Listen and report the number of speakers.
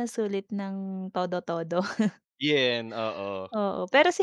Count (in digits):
2